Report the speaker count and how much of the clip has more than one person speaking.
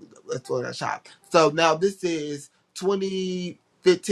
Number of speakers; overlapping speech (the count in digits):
1, no overlap